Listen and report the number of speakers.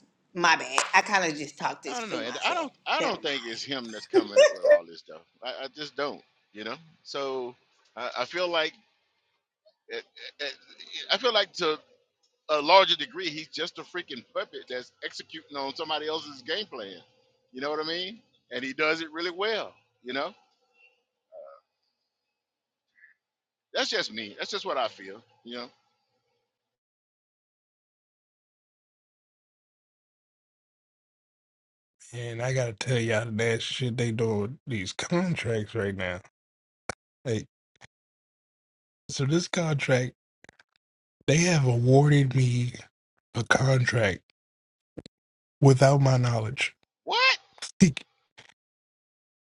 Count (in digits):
3